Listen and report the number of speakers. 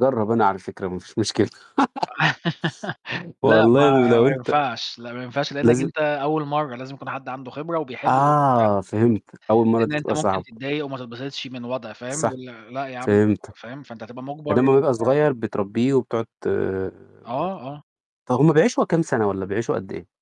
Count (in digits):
2